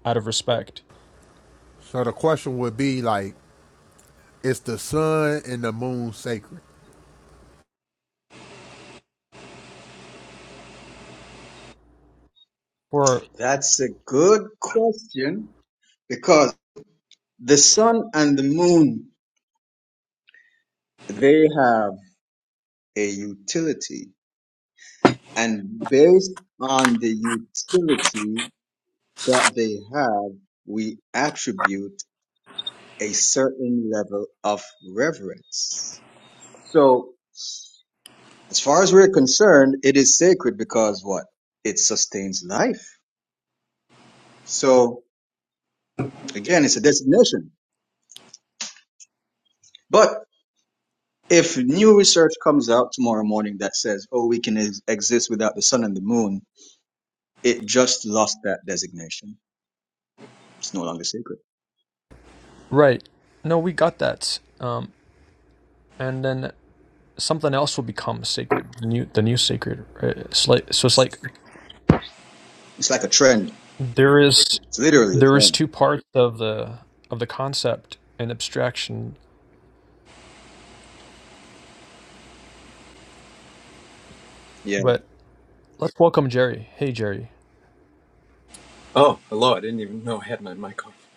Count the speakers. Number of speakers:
4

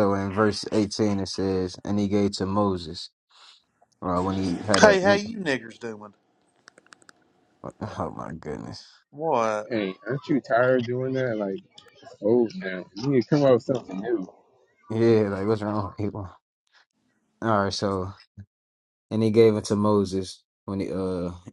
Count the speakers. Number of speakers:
3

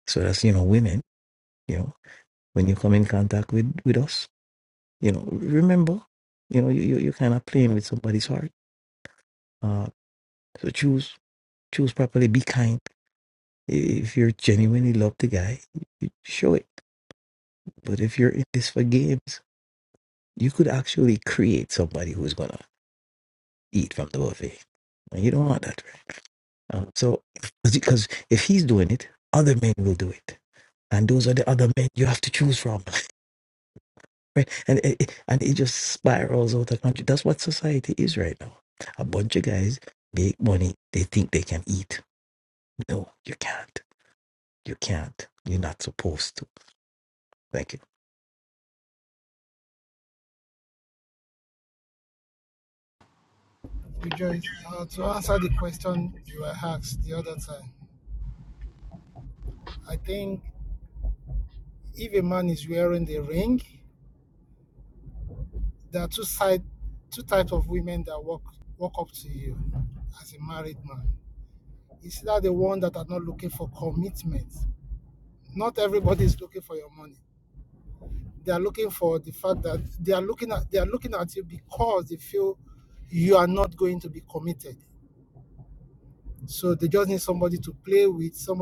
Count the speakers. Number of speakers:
2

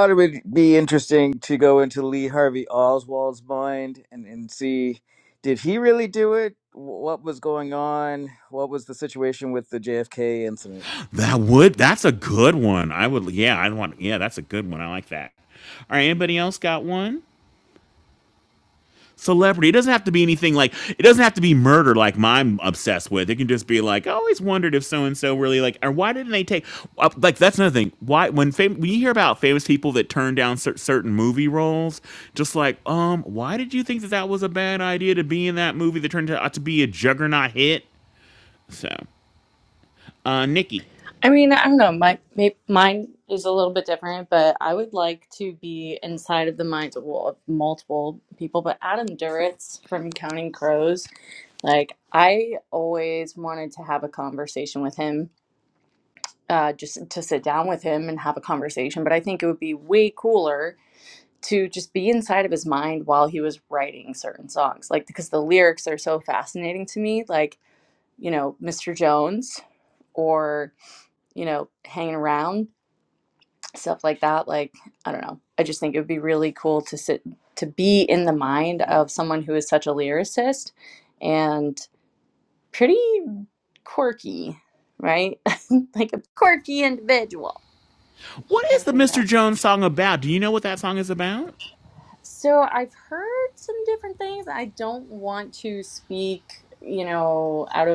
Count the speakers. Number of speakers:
3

